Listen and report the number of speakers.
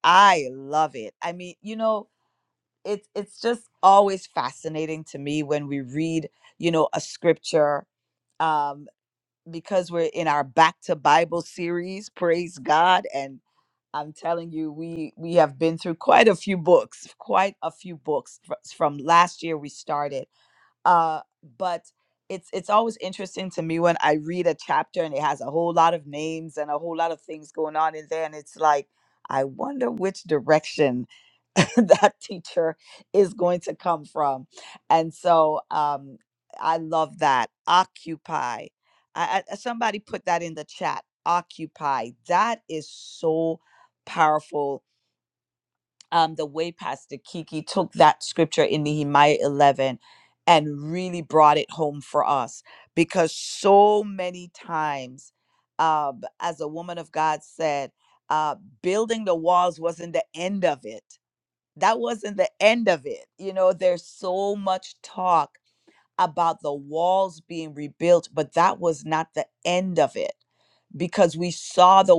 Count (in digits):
1